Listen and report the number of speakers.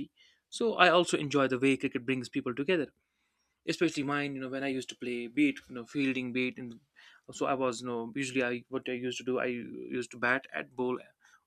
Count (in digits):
1